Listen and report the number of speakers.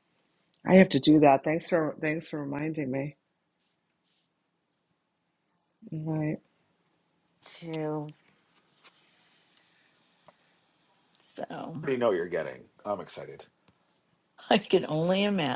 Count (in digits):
3